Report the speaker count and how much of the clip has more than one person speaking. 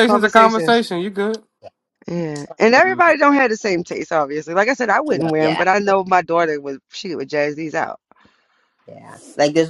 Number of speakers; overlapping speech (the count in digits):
3, about 16%